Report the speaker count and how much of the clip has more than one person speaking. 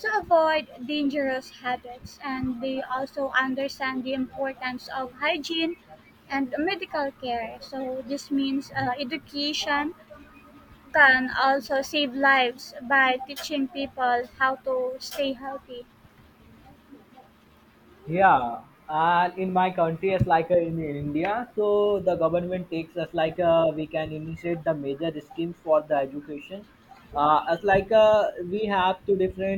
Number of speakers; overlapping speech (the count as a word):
two, no overlap